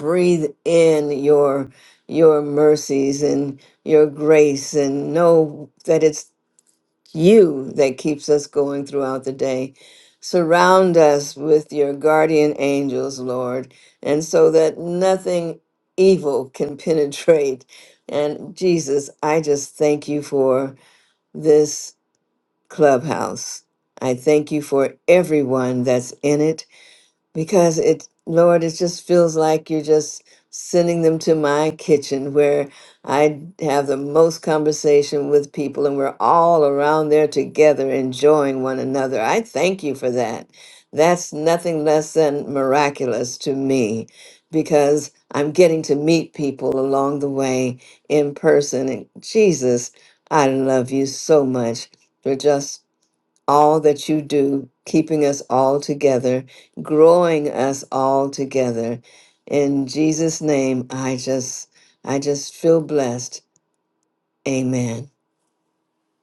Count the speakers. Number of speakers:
1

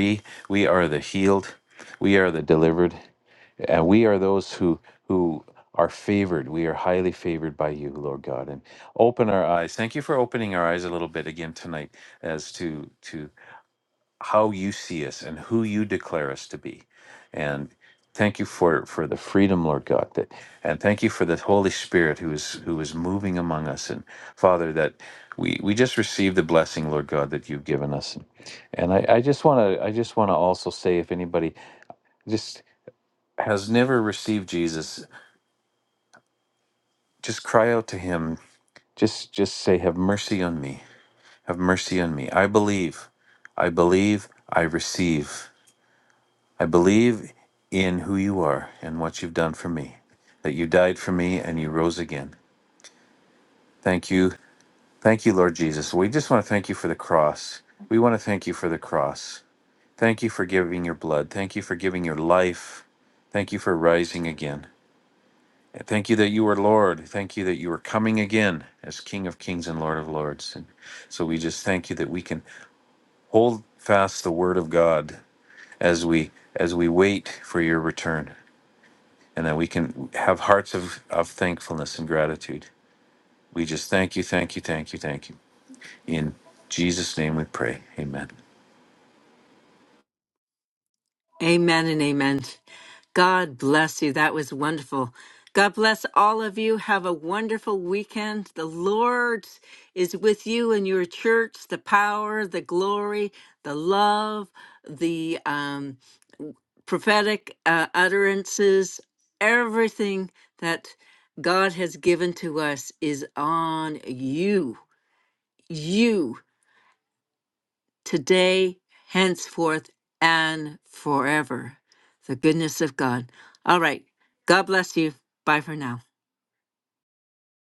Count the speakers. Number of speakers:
2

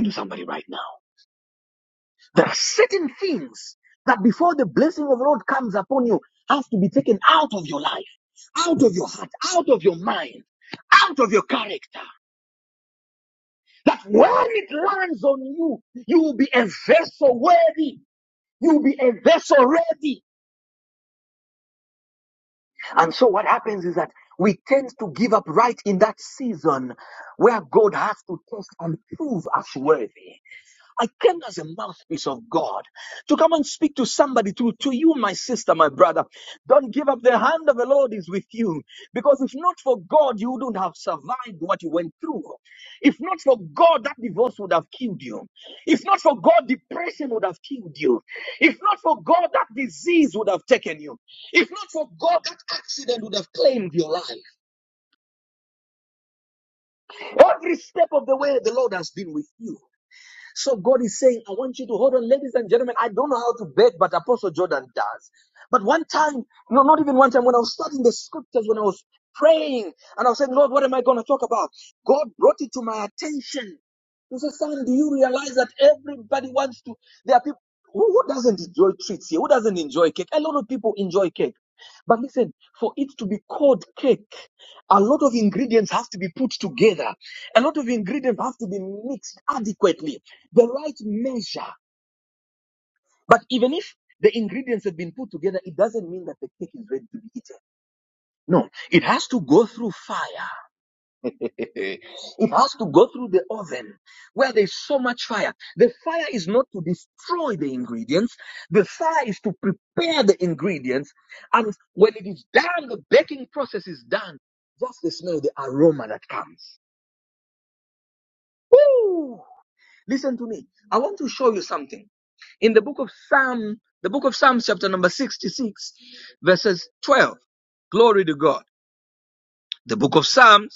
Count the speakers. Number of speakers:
1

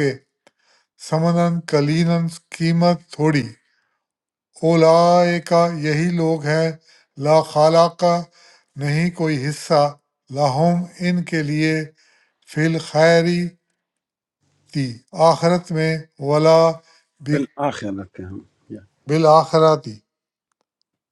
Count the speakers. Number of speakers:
2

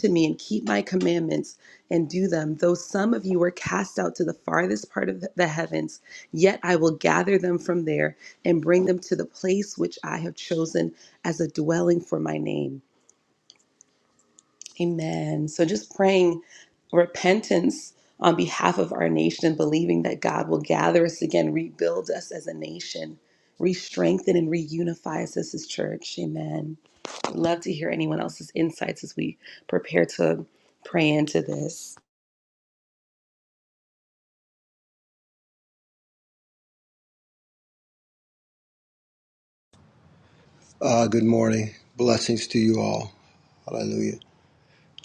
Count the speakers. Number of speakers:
2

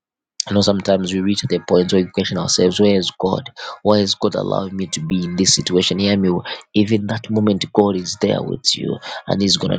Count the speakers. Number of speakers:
1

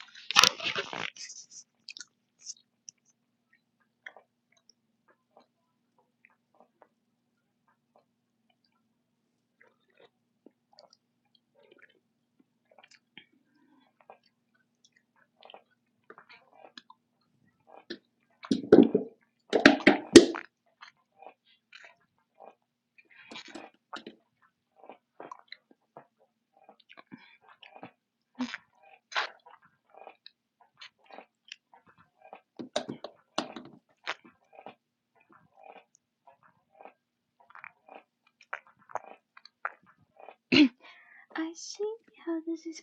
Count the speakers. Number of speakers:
1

